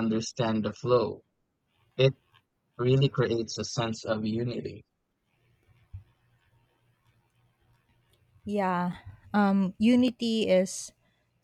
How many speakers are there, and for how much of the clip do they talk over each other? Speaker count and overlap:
2, no overlap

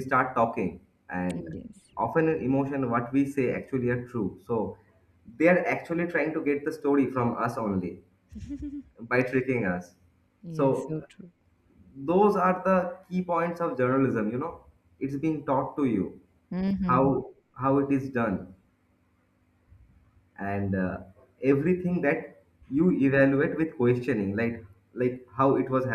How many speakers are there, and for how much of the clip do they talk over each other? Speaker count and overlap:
2, about 3%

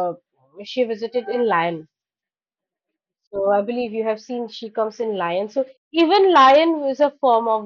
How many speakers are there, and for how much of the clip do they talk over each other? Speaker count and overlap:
1, no overlap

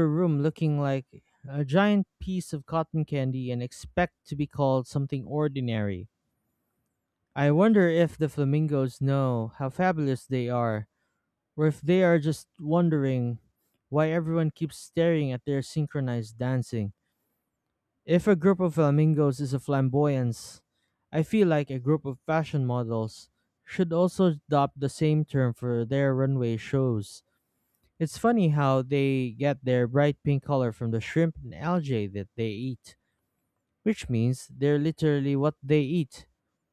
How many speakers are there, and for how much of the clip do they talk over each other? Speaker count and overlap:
1, no overlap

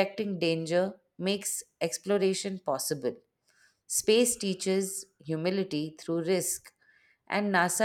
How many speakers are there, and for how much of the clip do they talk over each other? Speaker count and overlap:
1, no overlap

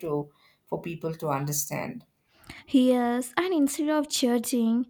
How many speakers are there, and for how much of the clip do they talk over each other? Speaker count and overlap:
2, no overlap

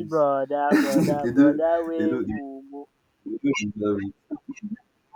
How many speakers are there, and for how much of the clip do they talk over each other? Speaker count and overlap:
2, about 36%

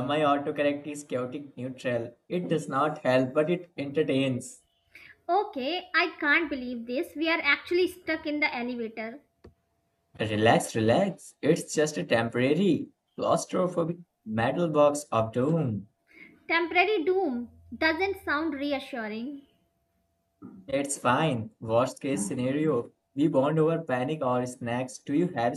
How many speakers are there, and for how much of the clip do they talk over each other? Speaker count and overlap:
2, no overlap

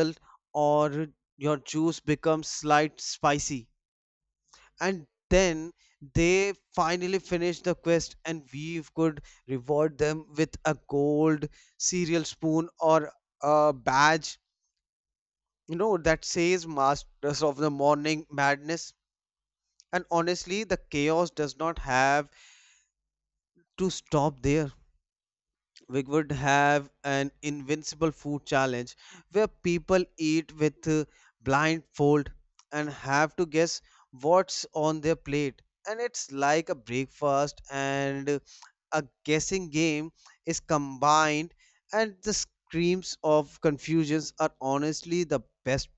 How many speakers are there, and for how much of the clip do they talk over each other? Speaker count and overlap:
1, no overlap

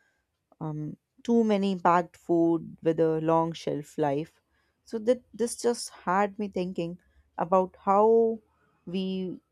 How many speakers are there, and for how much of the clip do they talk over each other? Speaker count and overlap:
1, no overlap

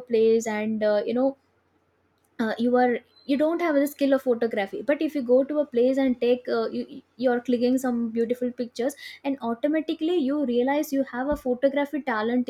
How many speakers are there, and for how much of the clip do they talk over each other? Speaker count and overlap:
1, no overlap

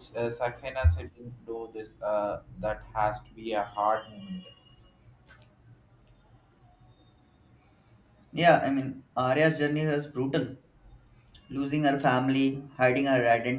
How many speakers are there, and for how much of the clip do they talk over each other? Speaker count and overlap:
2, no overlap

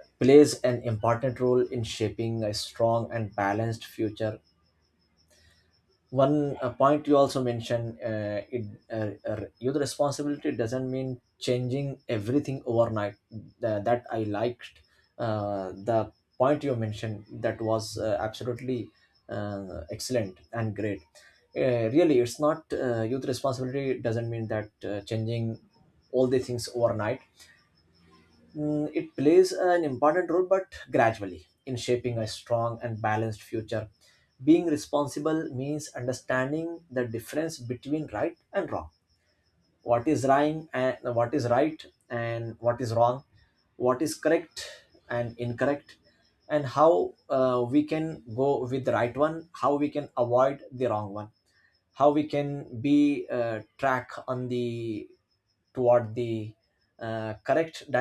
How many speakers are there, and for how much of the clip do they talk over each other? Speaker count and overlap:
1, no overlap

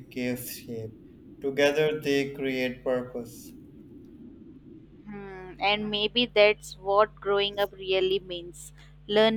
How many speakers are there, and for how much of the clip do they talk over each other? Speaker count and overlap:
2, no overlap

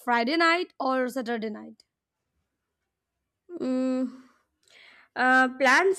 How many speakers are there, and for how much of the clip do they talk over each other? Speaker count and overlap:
2, no overlap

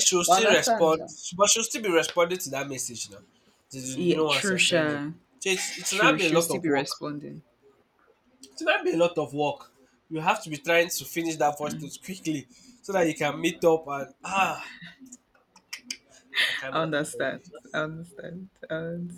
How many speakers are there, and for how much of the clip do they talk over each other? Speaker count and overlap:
2, about 18%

